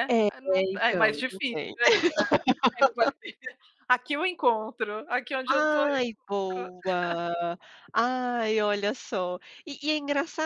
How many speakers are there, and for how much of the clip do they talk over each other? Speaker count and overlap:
two, about 17%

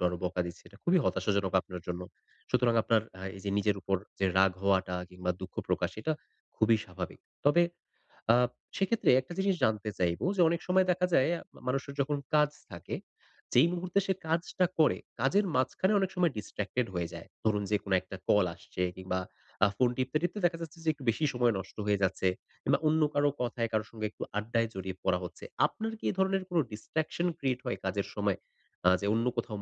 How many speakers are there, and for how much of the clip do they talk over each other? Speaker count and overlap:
one, no overlap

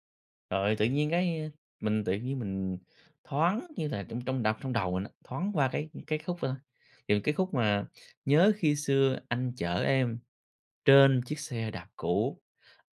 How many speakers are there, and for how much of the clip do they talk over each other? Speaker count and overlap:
one, no overlap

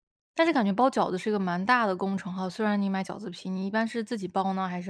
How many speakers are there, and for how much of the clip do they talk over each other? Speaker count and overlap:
one, no overlap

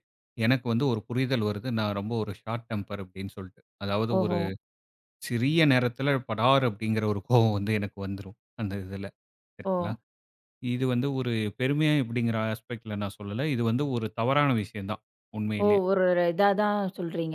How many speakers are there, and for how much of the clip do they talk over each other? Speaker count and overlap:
two, about 5%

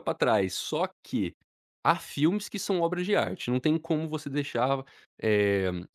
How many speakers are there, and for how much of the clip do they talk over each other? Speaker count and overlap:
one, no overlap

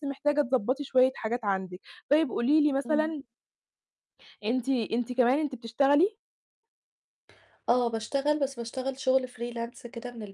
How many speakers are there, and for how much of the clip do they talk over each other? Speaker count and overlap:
two, about 2%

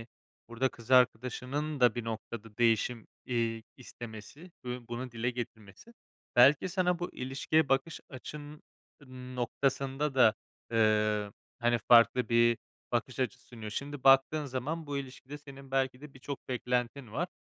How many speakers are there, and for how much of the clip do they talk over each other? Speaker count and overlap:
one, no overlap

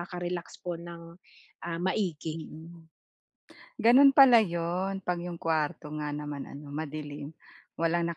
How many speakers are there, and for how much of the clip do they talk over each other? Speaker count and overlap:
two, under 1%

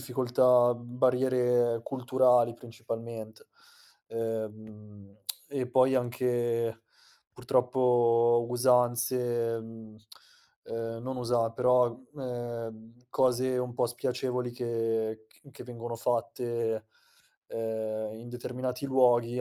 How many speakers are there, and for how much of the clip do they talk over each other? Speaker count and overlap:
one, no overlap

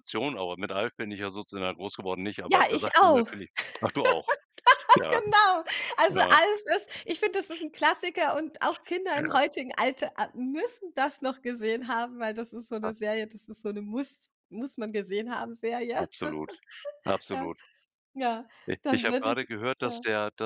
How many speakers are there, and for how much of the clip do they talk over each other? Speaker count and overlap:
two, about 14%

